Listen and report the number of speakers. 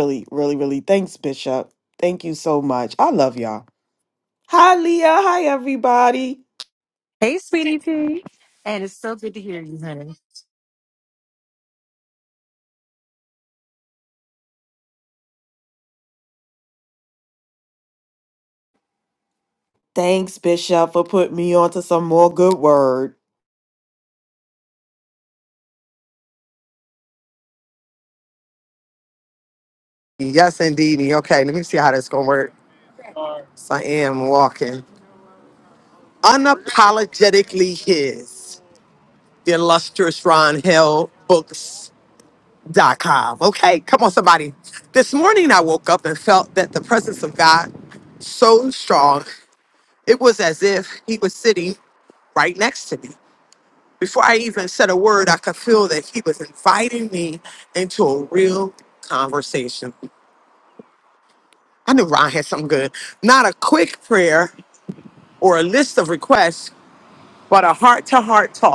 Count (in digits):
3